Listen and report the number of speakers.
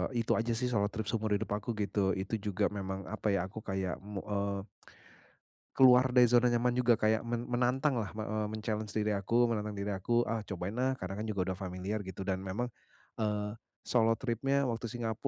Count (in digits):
1